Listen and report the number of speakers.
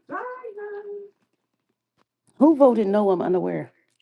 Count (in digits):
1